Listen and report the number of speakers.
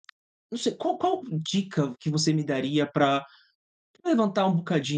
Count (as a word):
one